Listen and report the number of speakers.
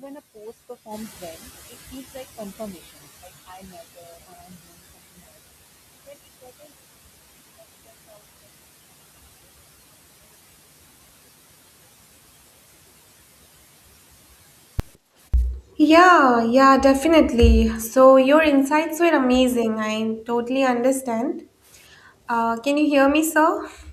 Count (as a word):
two